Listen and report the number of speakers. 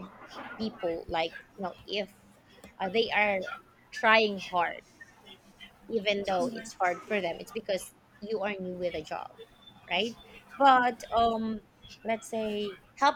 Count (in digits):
1